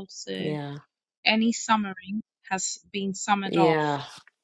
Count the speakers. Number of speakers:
2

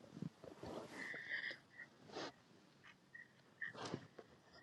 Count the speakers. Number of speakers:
0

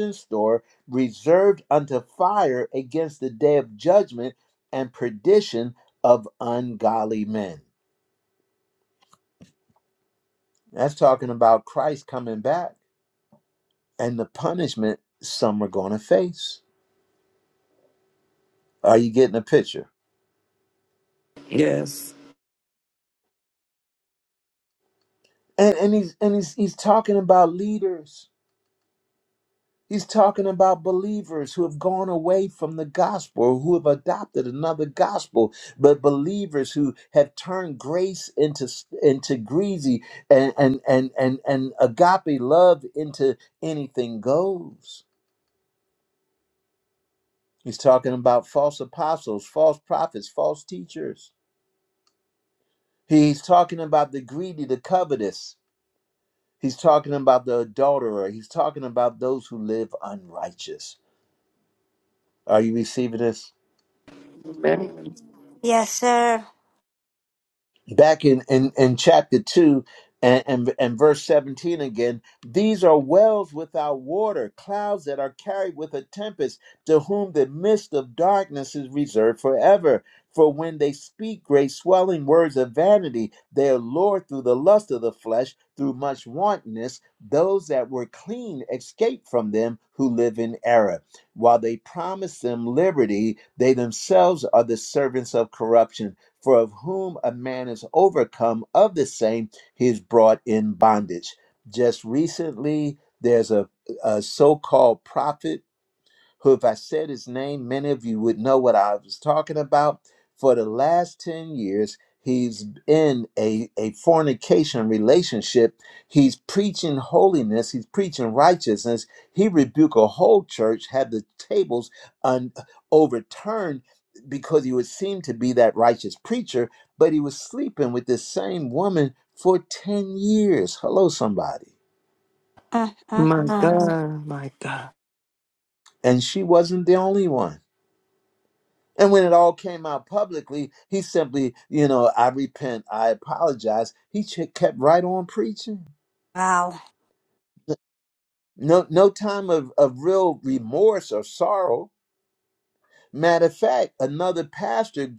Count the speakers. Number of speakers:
4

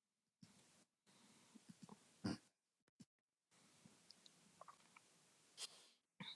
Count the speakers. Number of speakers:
0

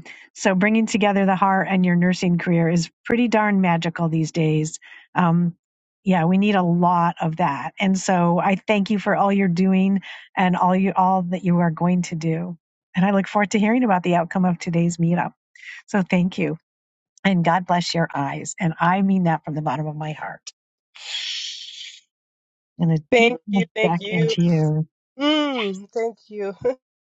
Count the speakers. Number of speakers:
2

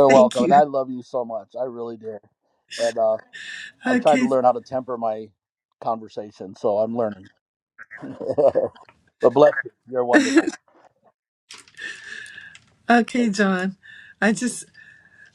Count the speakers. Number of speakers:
2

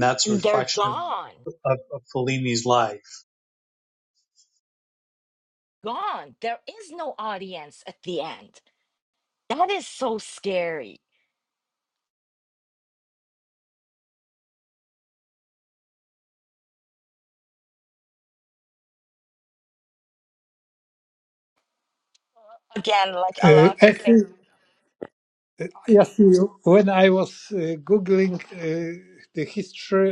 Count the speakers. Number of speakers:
3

